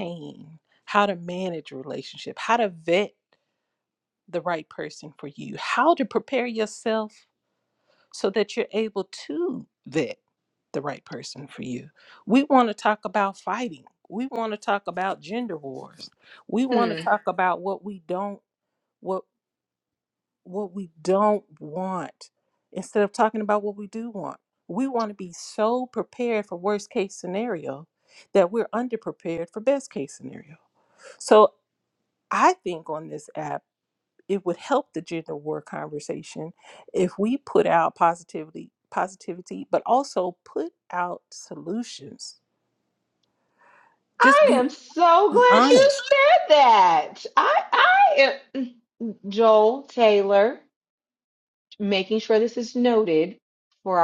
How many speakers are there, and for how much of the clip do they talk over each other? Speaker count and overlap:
two, about 3%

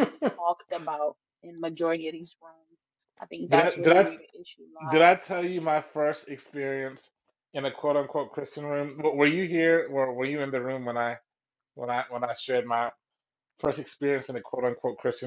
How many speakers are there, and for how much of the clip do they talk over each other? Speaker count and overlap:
two, about 6%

